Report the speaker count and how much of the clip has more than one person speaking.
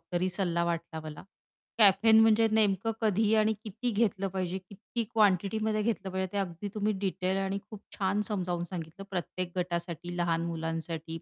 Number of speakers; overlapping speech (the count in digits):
1, no overlap